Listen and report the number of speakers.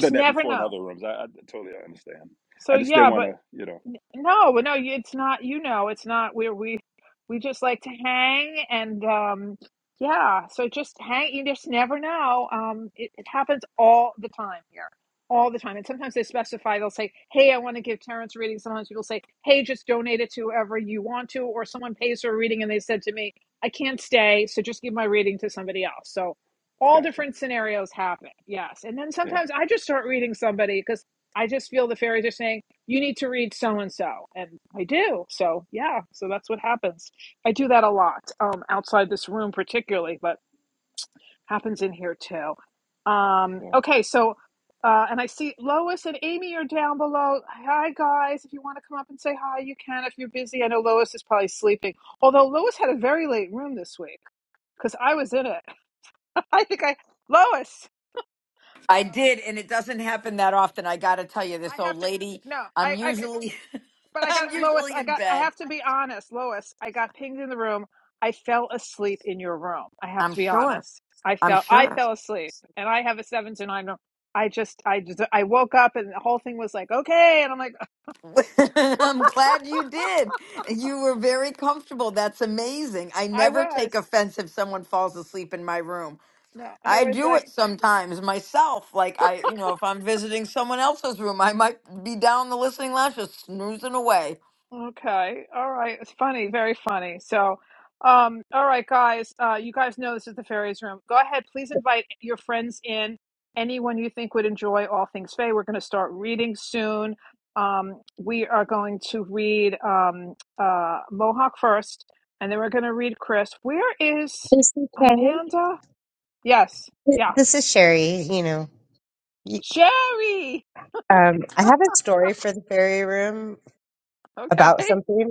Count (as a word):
four